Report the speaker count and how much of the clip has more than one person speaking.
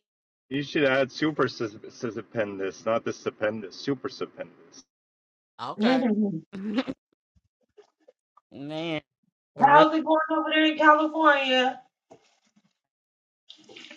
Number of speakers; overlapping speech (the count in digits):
3, about 4%